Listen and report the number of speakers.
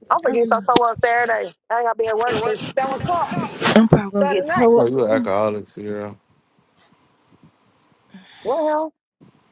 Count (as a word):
three